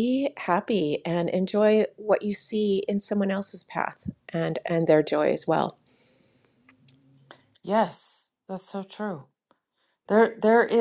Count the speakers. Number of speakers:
2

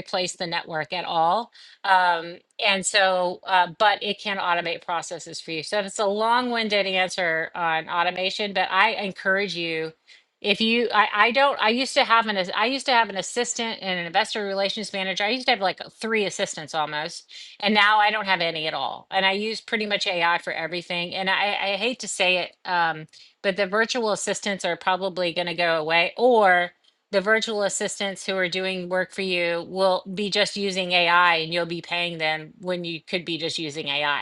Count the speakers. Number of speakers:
1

